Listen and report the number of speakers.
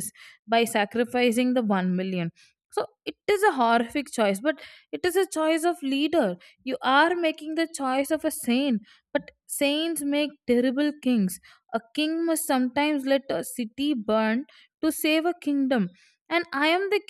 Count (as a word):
one